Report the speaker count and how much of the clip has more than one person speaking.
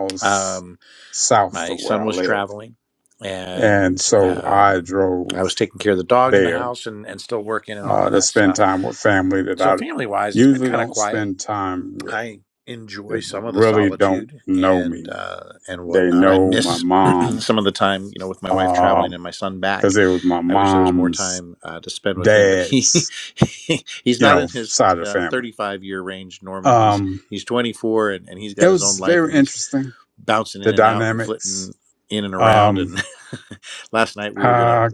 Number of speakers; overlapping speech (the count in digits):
2, about 40%